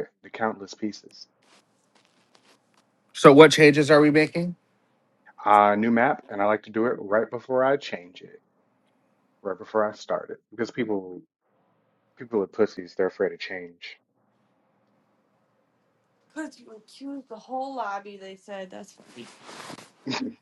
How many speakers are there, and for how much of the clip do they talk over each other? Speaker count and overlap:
3, no overlap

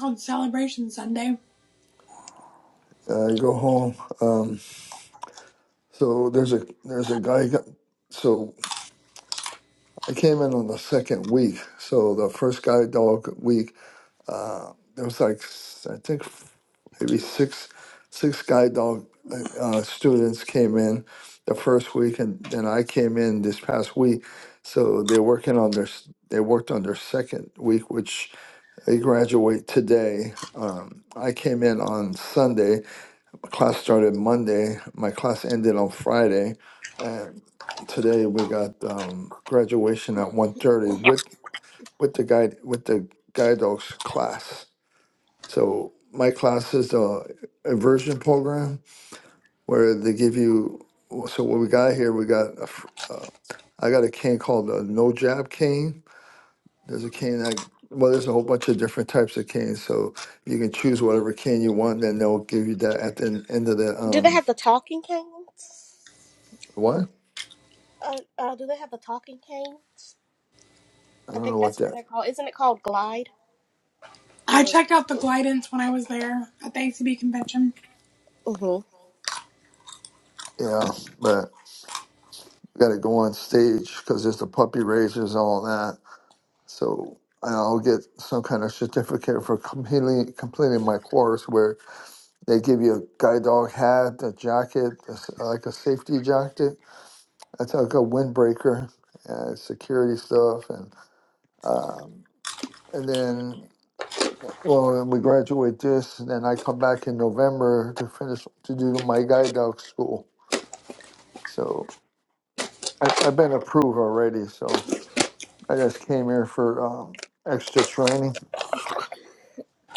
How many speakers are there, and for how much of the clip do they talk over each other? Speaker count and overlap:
3, about 1%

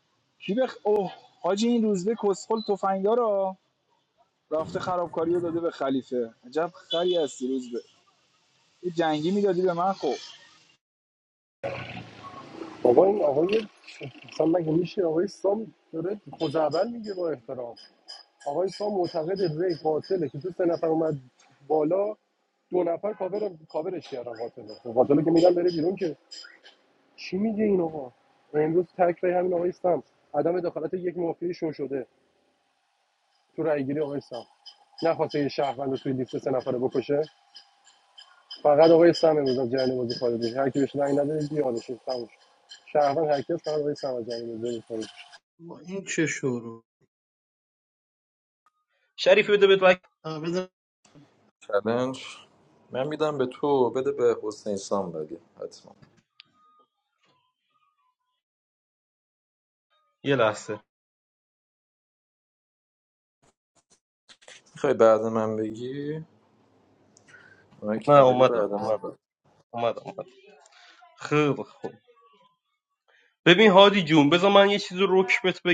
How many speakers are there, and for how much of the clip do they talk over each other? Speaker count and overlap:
5, about 1%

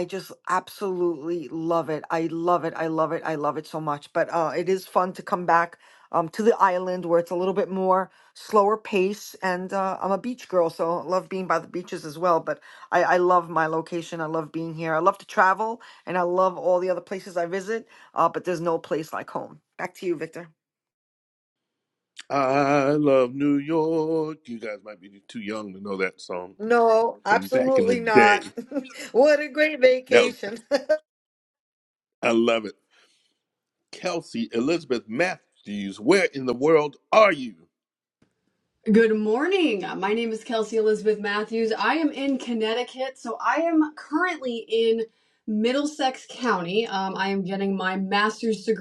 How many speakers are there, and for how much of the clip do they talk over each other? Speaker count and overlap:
3, about 3%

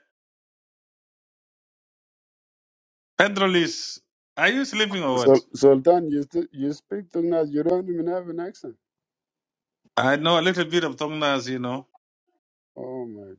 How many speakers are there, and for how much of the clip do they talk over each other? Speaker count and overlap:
2, about 1%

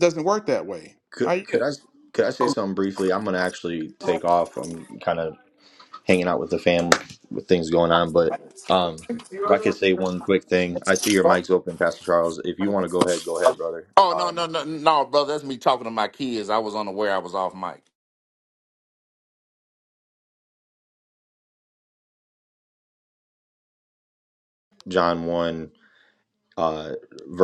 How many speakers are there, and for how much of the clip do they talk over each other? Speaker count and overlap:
3, about 3%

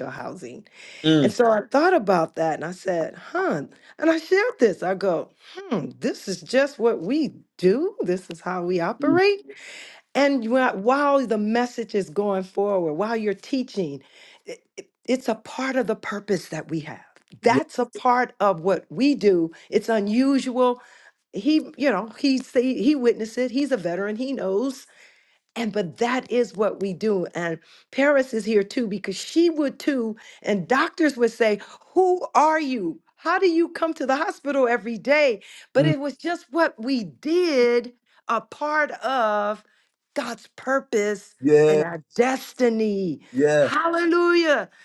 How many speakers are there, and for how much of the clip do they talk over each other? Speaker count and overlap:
2, about 2%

